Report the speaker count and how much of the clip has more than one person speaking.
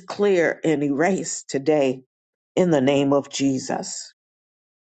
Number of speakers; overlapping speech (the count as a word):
one, no overlap